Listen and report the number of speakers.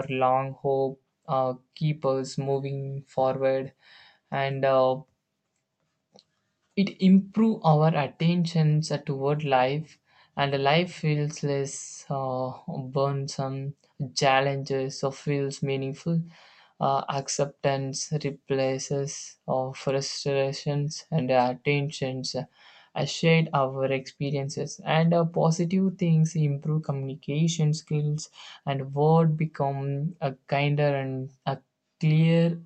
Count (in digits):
1